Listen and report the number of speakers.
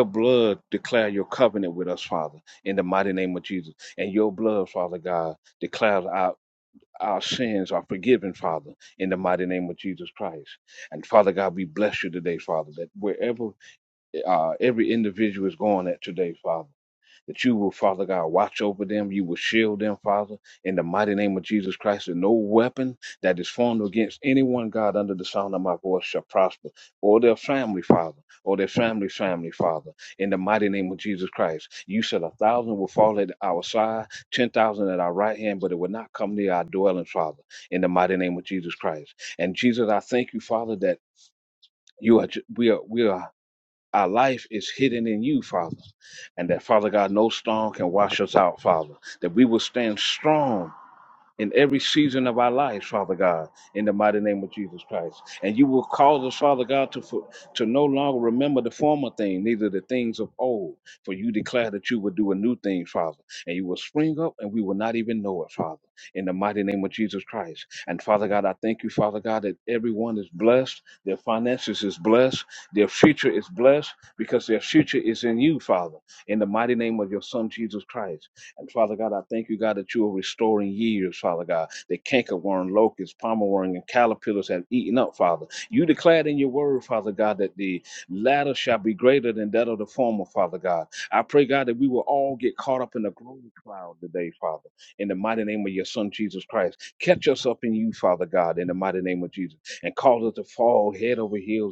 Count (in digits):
1